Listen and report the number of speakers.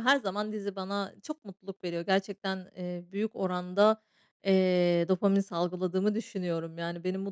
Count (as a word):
one